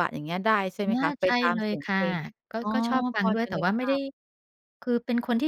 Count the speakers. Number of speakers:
two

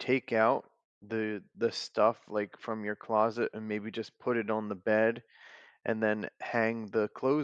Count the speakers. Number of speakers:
one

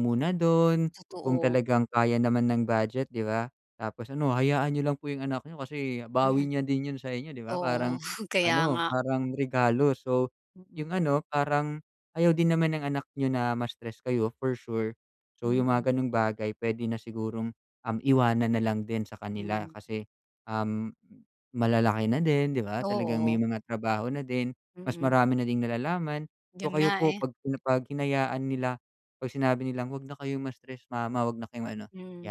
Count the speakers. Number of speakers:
two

